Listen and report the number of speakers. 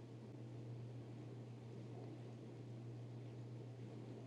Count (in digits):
0